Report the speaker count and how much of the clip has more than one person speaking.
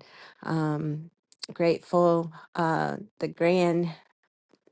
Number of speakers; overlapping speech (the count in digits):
1, no overlap